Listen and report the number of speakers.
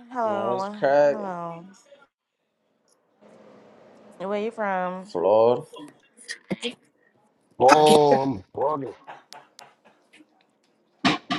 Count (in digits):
3